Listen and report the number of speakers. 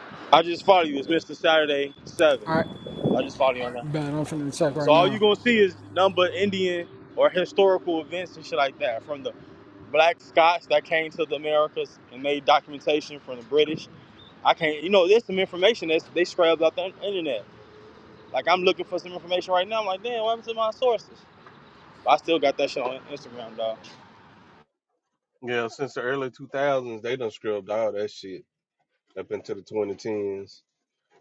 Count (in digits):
3